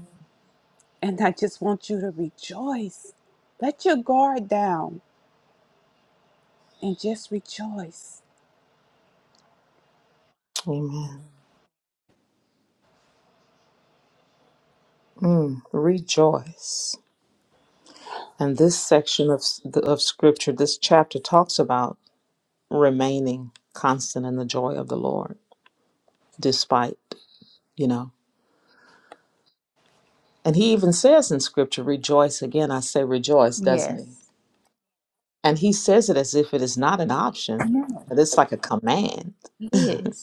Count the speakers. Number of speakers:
3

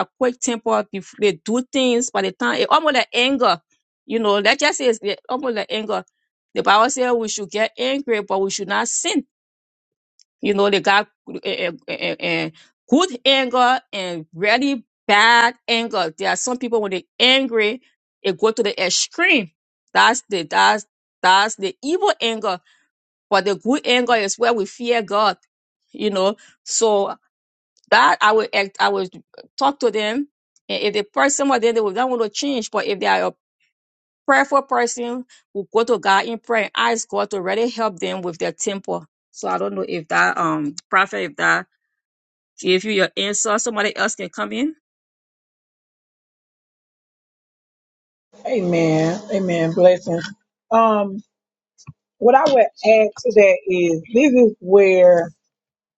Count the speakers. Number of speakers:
2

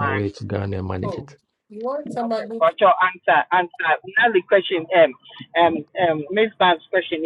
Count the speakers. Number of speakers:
3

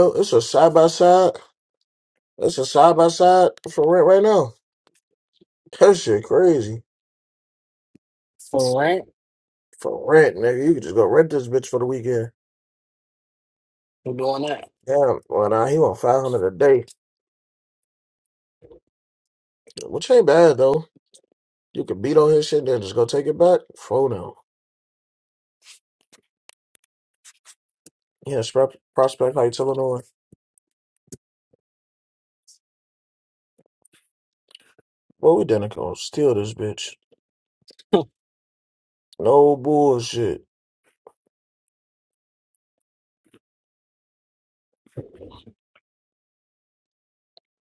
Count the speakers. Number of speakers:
2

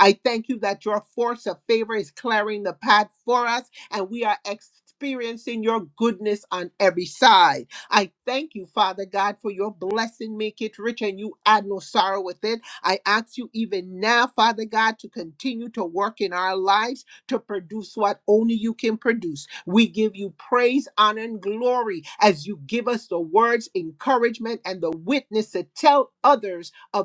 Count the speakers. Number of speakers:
1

